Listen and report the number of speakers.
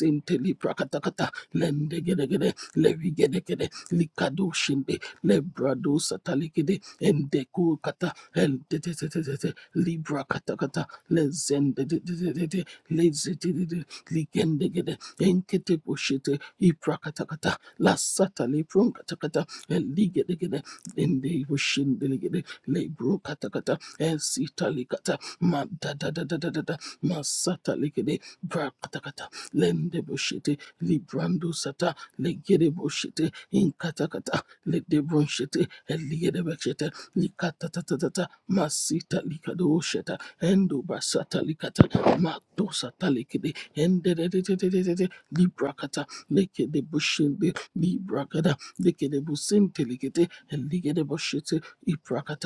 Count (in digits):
1